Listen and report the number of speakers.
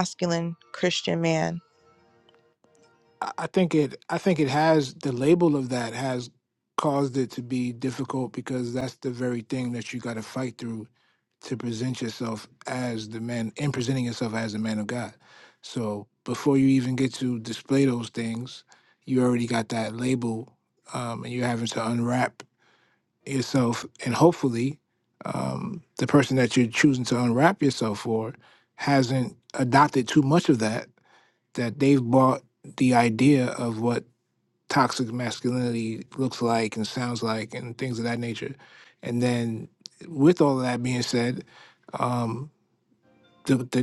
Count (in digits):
2